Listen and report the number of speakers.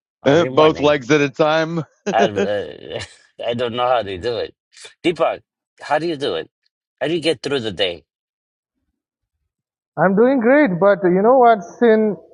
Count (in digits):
3